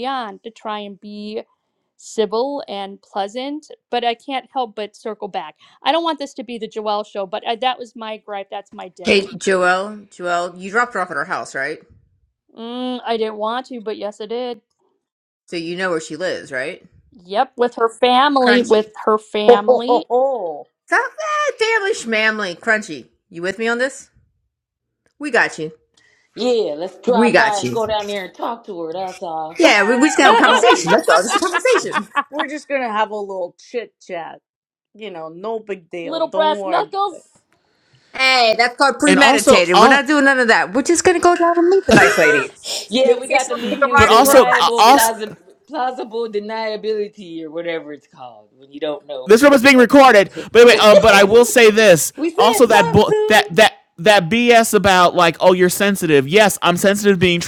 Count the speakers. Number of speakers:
five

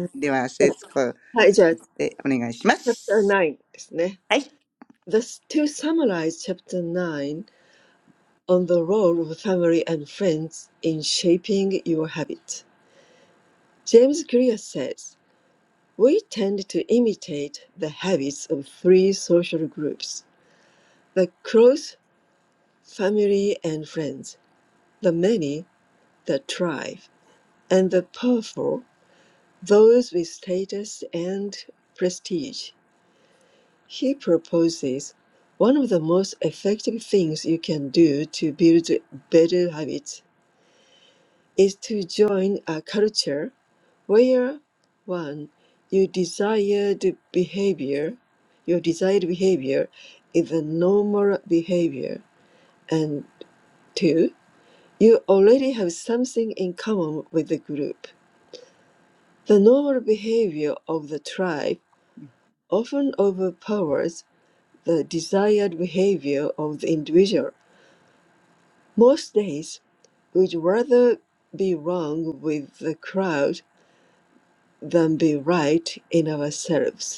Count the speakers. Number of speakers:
two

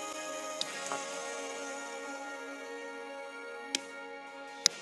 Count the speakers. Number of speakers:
zero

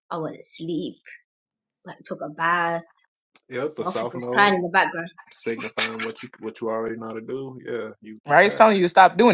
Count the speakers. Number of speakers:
three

